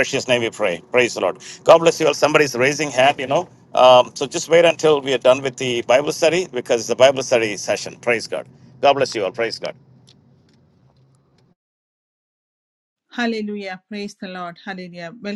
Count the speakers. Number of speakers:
two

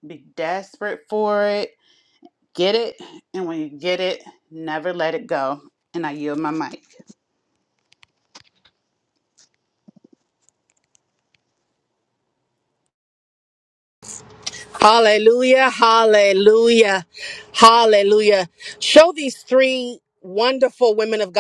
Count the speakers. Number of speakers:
two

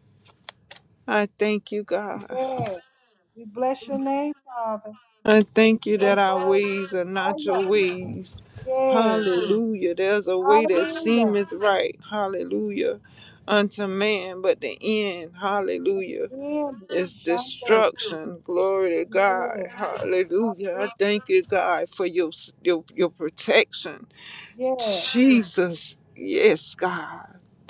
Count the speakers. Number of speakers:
two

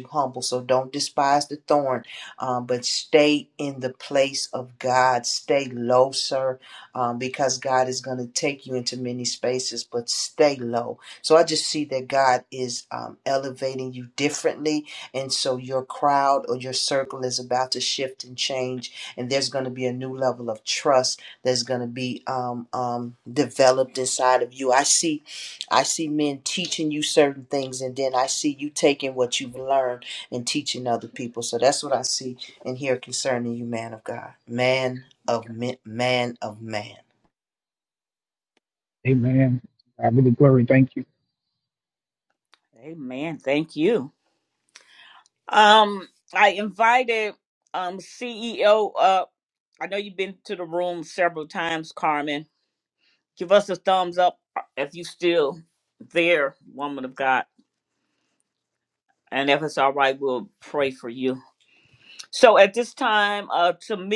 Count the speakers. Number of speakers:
three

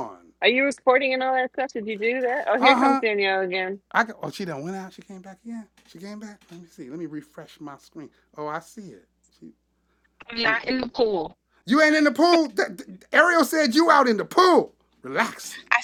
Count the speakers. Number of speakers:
three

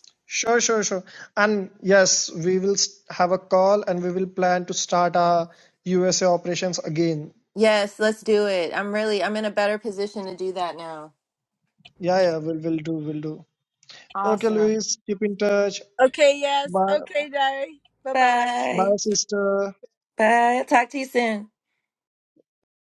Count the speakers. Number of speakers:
three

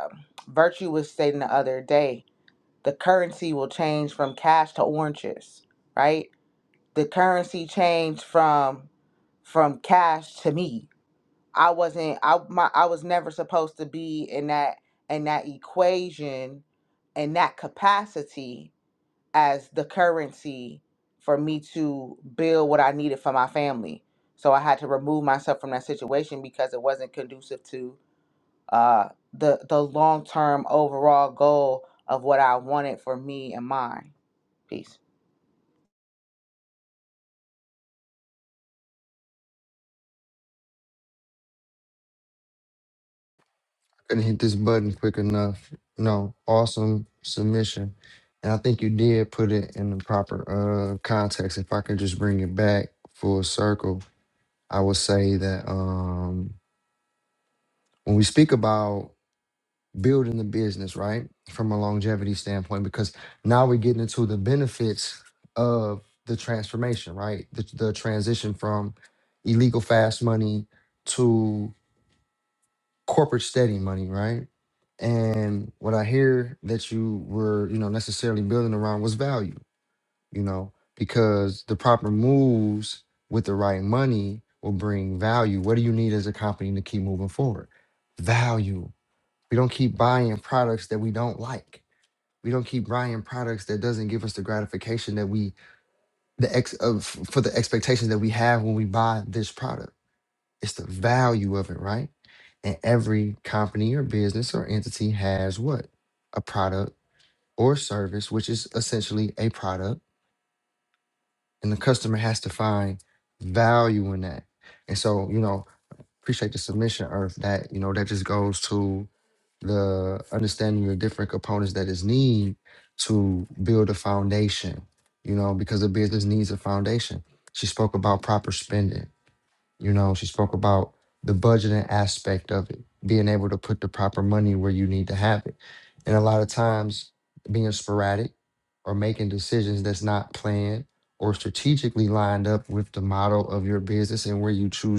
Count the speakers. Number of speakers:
two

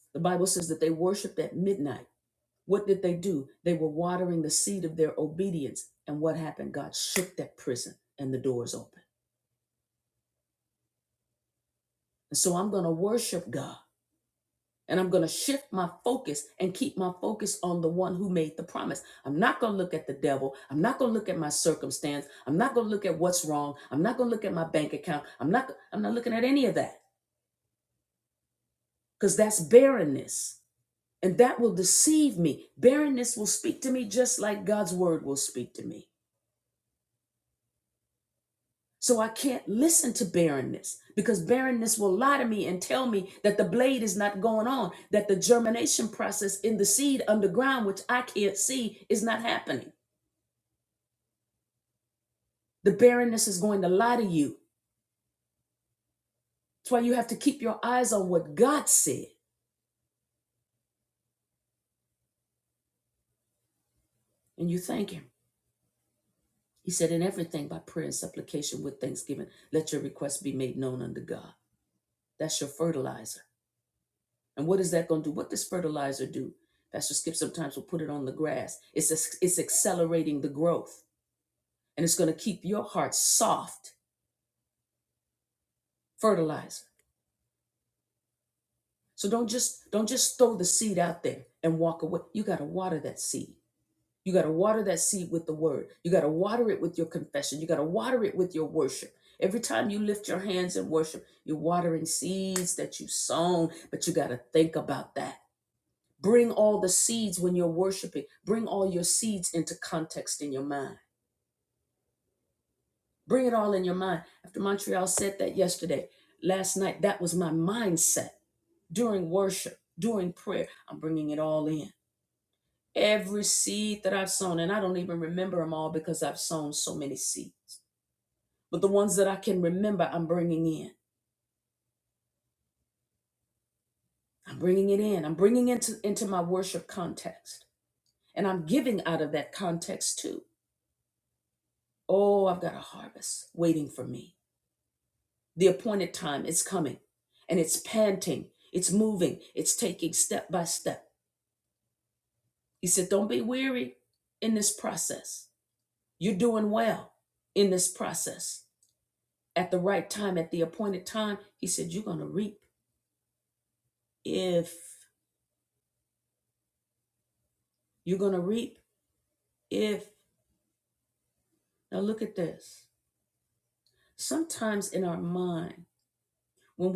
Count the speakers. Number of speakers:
one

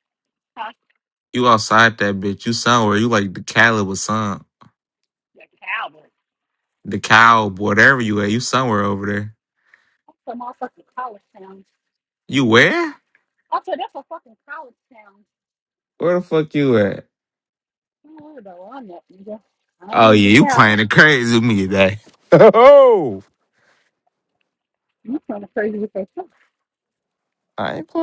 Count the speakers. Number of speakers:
two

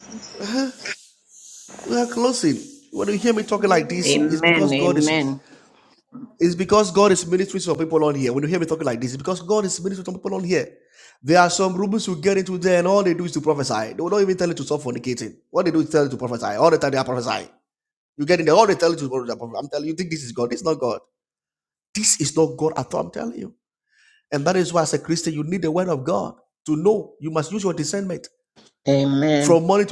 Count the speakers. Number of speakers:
two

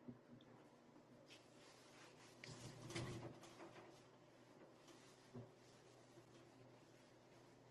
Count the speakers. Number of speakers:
zero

